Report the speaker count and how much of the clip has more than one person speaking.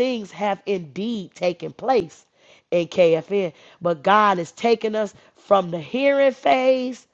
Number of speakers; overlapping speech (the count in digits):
1, no overlap